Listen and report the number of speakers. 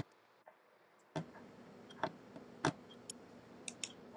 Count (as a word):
zero